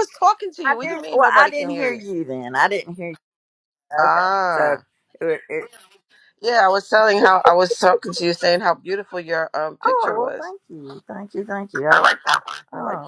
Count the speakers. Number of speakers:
2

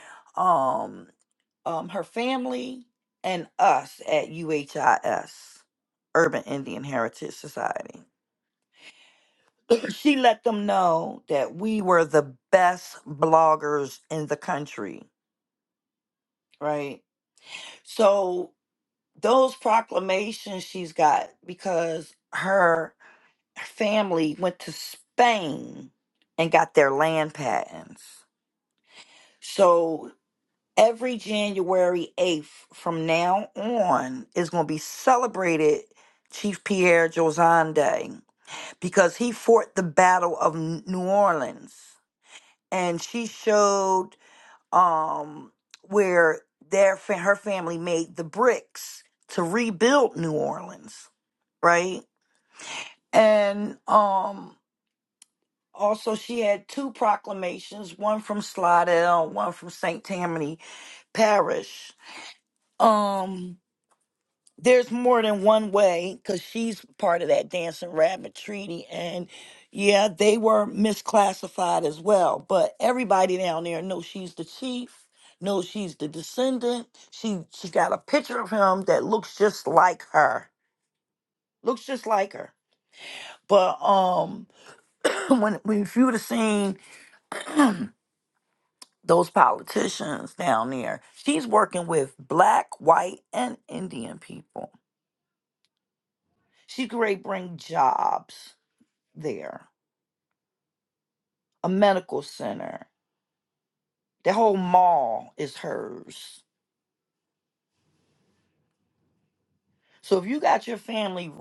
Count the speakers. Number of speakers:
1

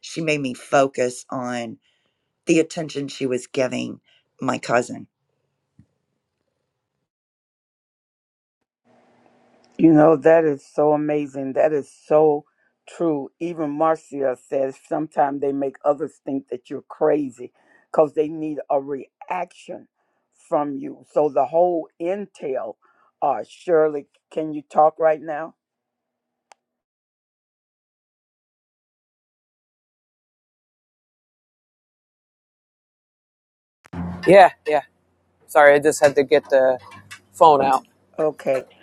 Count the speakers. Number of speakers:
3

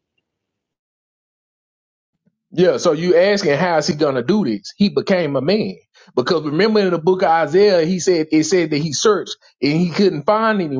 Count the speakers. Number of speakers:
1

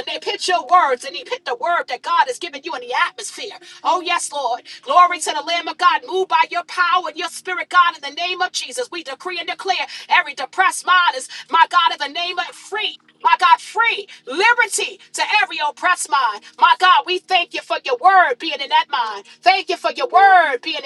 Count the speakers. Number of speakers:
1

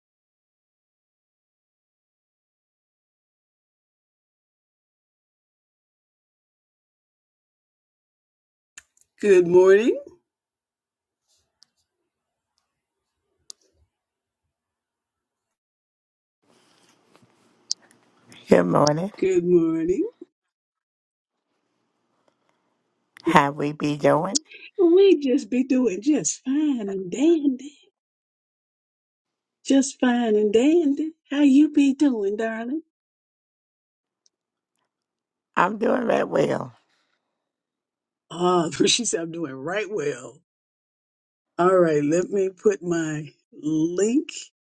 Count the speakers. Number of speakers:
2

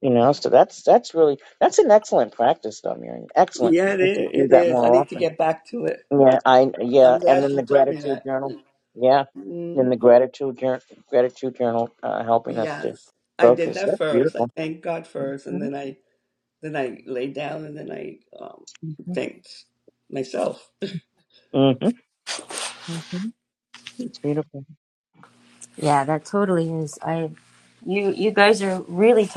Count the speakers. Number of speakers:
3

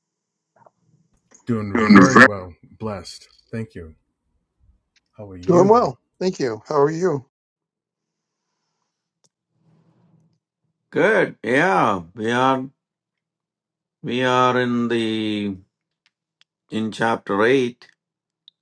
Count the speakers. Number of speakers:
3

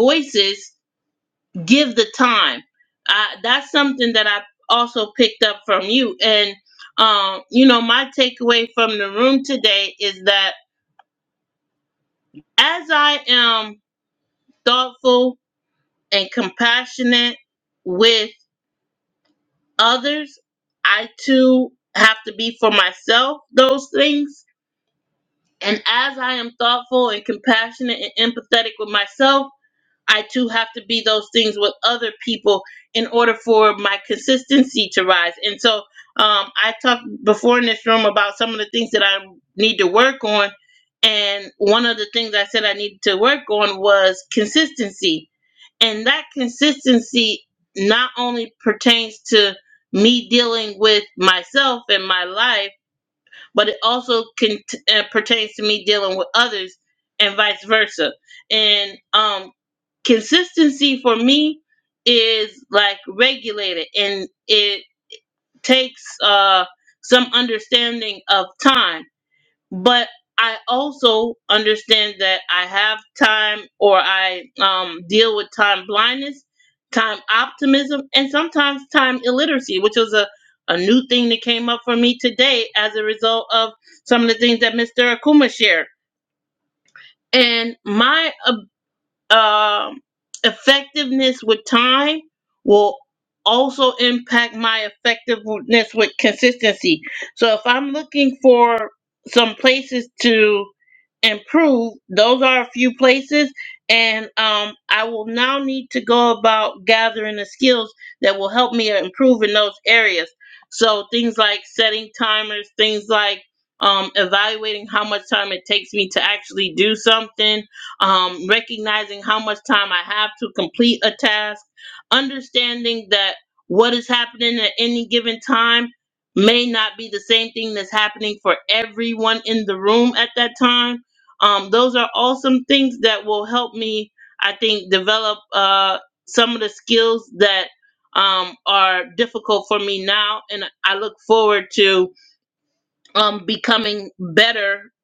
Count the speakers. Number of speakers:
1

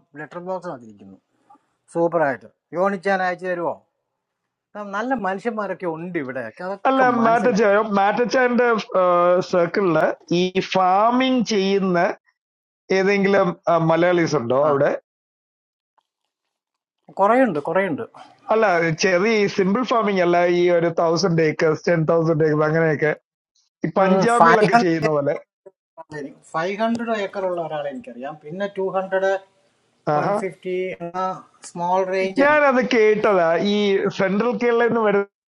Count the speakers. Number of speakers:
2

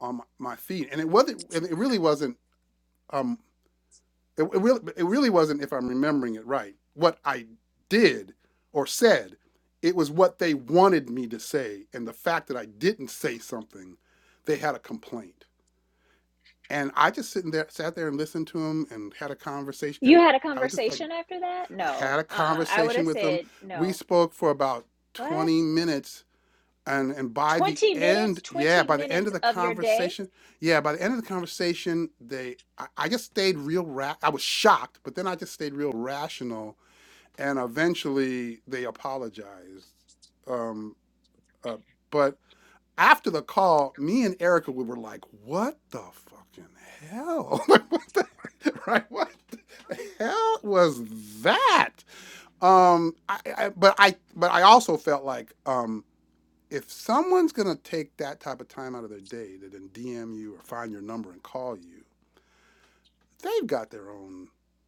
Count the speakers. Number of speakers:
2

